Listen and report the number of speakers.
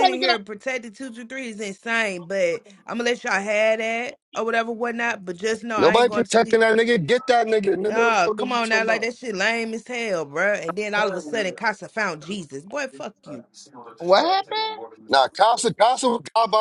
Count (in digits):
3